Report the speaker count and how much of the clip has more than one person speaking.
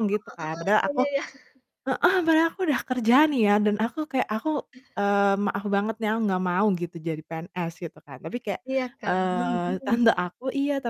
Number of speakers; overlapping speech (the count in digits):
2, about 8%